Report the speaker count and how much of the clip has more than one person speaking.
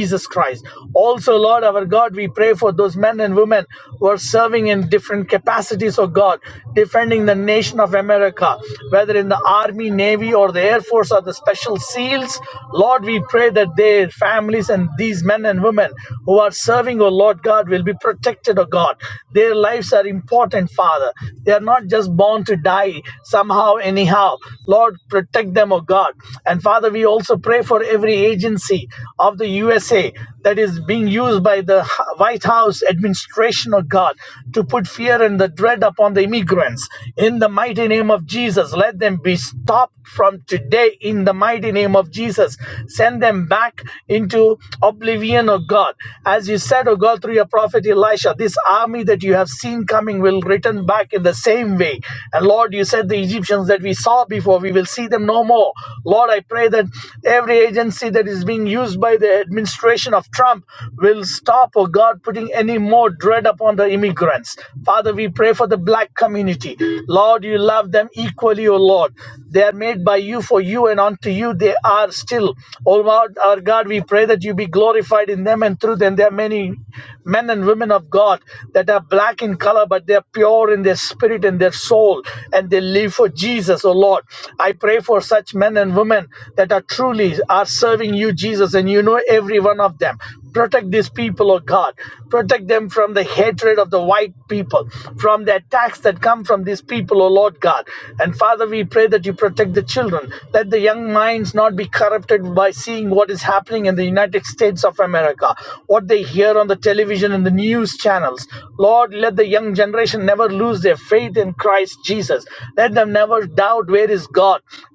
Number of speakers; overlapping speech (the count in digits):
1, no overlap